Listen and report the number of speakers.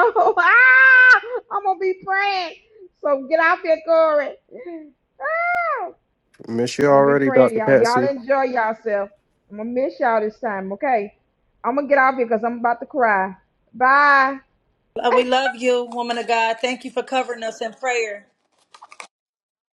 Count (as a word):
three